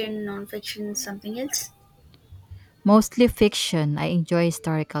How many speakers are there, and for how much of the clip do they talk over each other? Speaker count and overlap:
2, no overlap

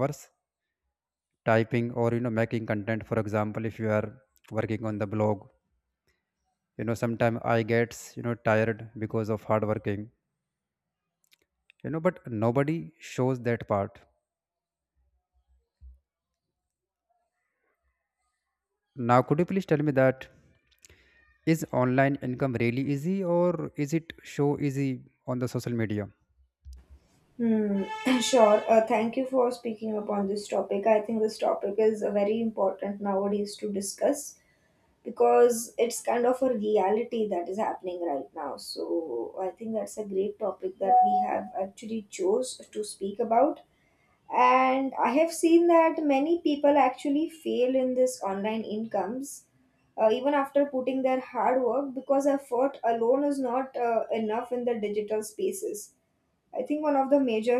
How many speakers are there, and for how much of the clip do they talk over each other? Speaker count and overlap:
2, no overlap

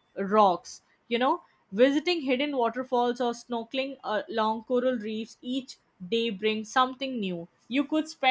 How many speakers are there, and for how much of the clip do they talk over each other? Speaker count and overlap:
1, no overlap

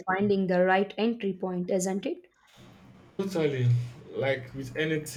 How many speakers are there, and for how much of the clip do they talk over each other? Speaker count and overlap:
2, no overlap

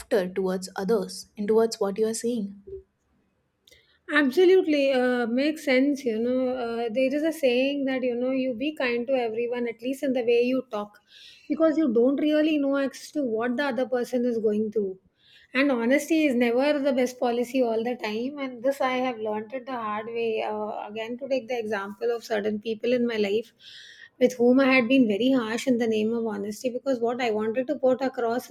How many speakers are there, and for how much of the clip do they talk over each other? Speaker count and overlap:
2, no overlap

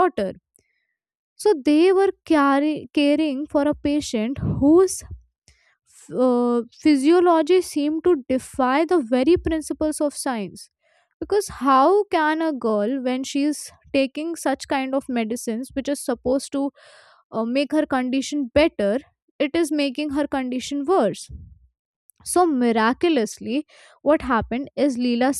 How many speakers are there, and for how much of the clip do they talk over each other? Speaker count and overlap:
1, no overlap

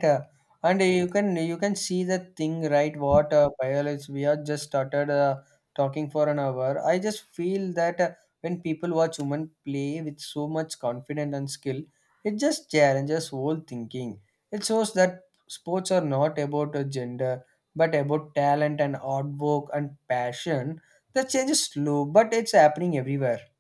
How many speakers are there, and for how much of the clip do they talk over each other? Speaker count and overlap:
1, no overlap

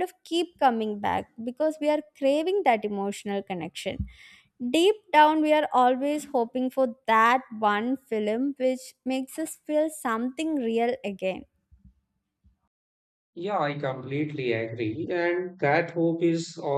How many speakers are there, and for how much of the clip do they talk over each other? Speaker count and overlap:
2, no overlap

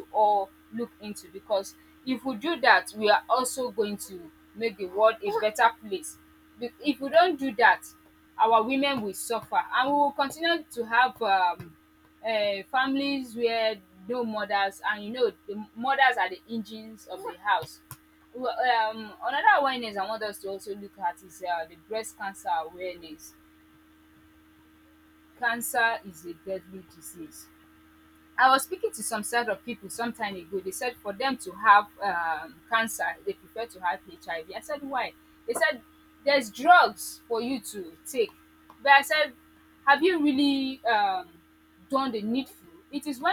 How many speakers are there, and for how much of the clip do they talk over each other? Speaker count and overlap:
1, no overlap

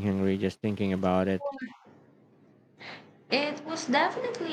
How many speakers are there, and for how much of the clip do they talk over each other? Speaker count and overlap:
2, no overlap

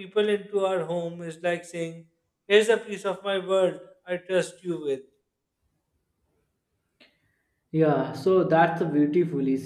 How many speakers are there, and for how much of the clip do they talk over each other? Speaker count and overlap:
2, no overlap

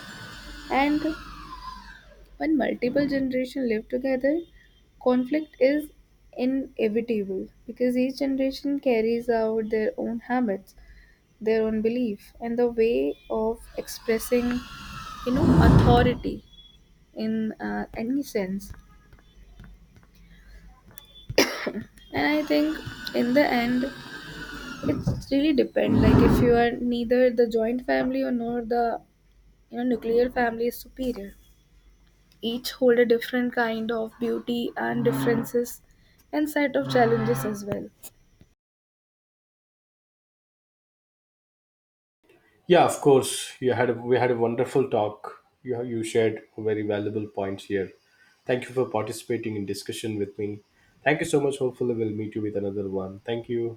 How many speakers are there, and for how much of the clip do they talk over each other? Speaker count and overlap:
2, no overlap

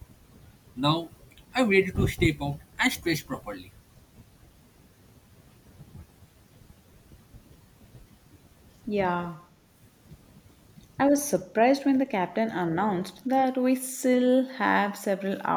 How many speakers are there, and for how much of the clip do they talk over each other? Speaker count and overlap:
2, no overlap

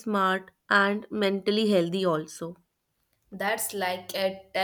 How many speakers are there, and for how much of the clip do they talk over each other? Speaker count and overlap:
2, no overlap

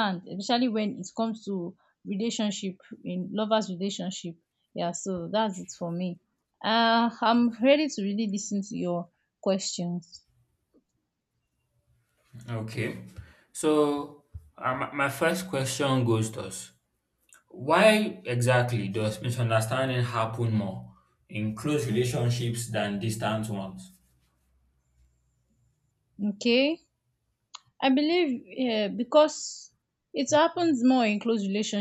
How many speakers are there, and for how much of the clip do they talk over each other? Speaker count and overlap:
2, no overlap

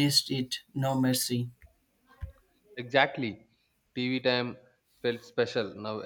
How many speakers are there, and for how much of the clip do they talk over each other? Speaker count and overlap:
2, no overlap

